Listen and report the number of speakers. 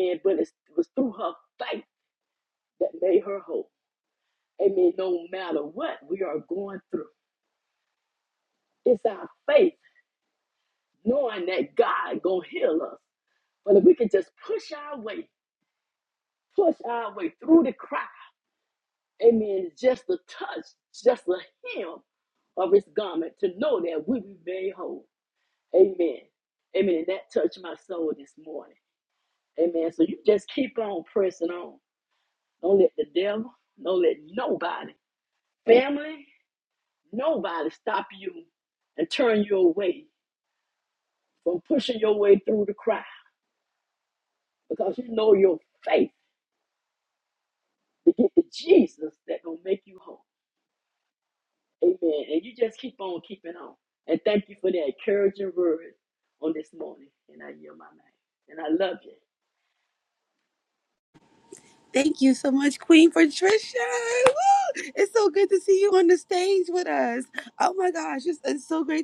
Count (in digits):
2